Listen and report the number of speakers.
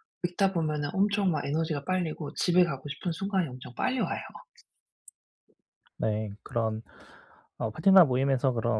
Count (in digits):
2